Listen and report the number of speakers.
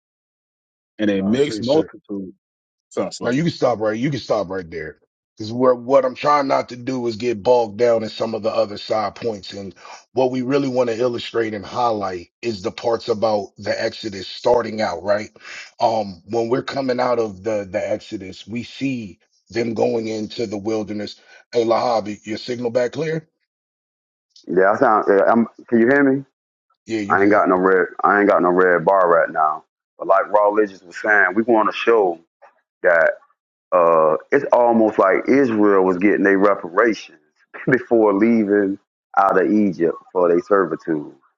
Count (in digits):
3